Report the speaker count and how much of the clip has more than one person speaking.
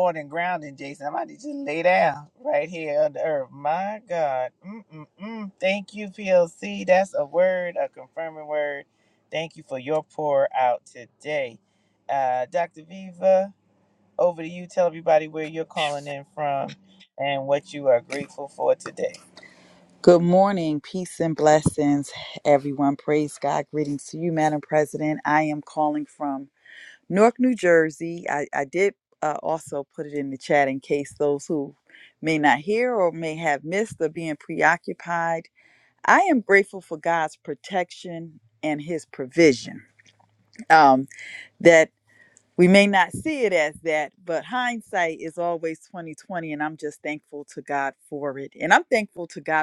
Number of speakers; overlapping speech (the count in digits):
2, no overlap